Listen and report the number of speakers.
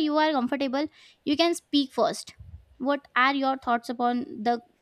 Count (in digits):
1